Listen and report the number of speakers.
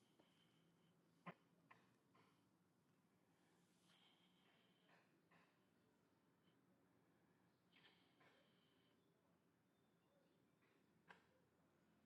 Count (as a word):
zero